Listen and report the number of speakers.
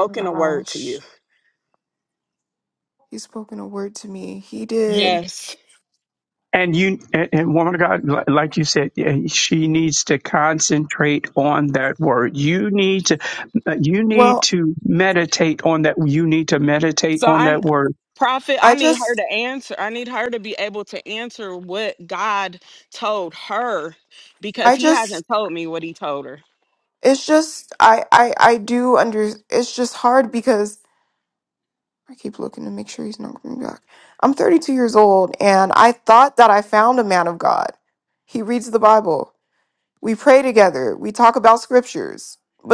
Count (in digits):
3